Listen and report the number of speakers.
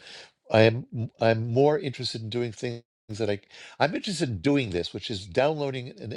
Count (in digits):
1